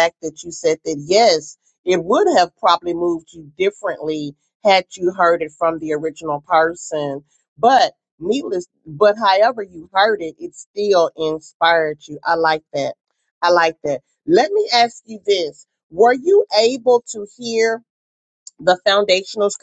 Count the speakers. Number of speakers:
1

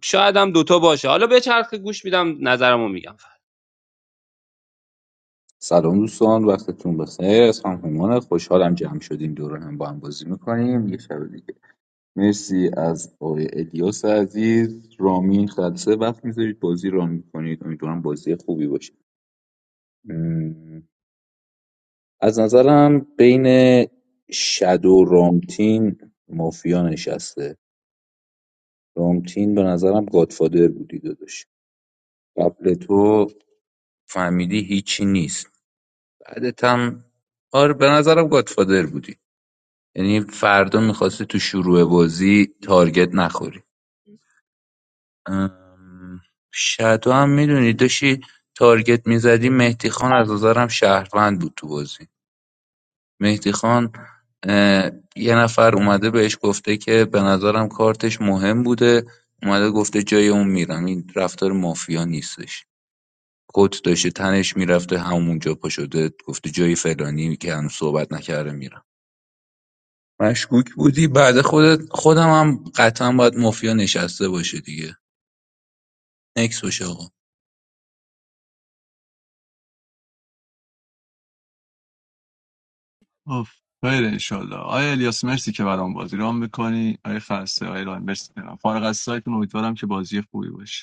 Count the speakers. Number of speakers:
3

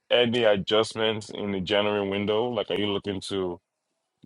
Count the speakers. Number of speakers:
1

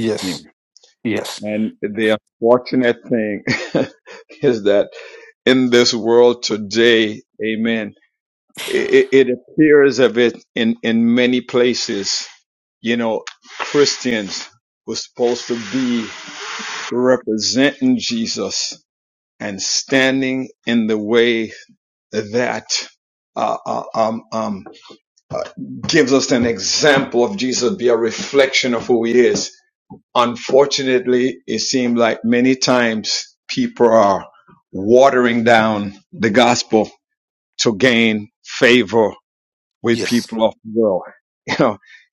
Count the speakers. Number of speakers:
2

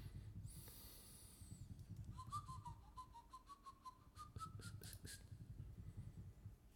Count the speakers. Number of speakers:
0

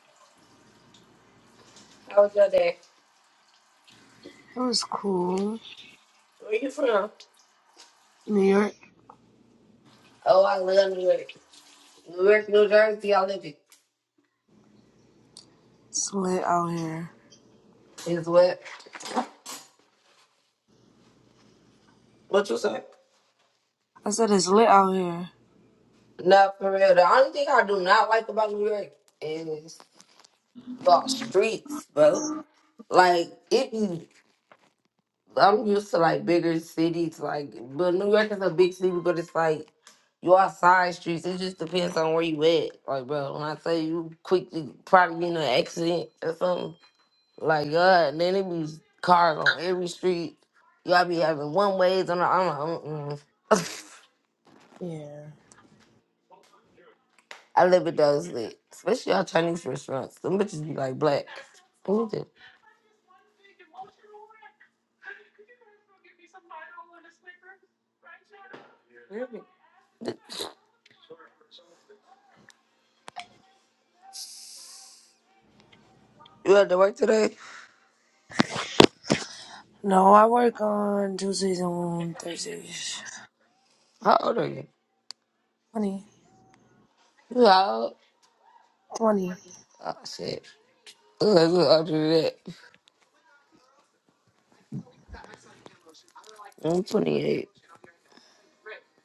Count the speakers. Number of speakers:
2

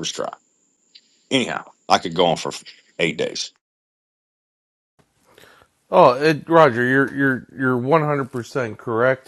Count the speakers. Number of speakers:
2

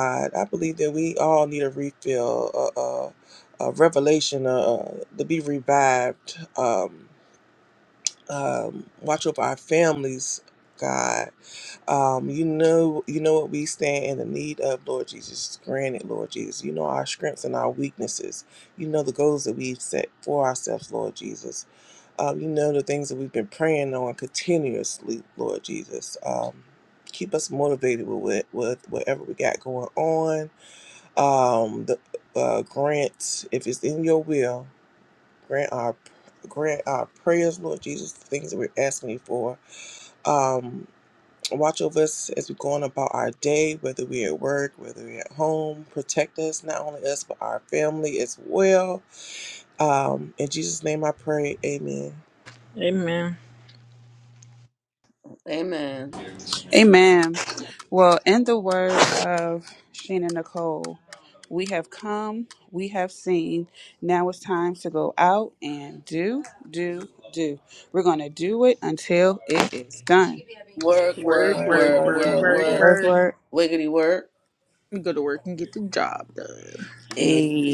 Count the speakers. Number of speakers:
4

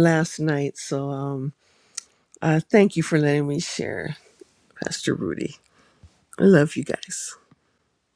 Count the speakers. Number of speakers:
1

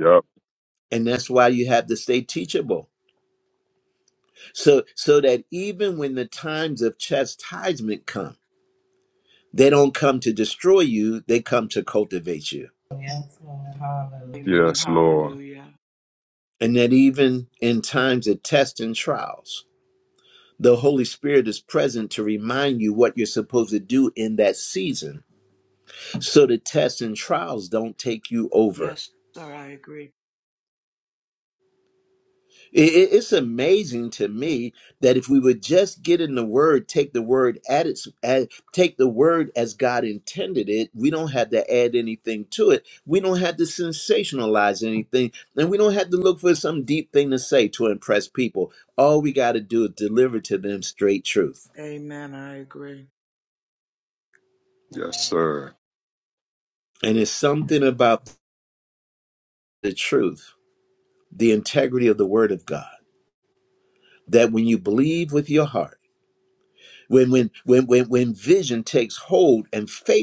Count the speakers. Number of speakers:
4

